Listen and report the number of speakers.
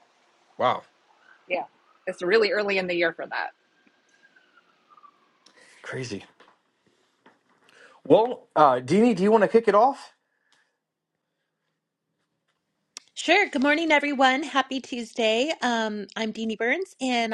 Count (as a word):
three